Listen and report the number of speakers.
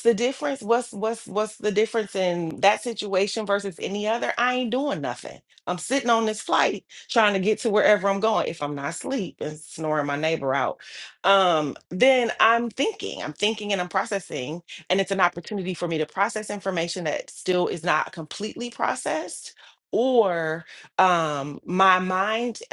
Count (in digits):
1